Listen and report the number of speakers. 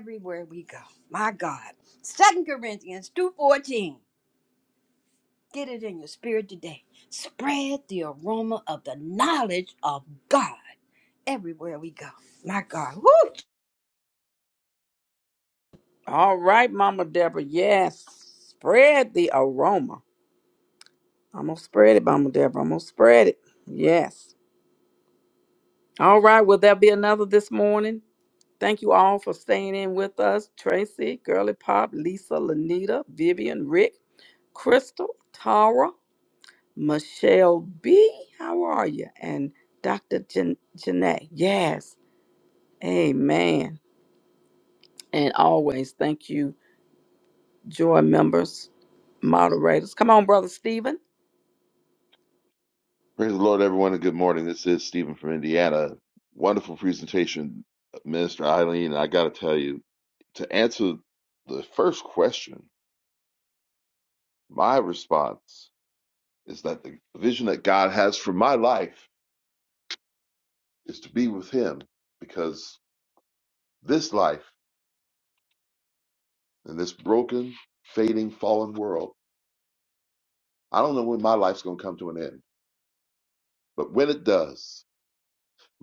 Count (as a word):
three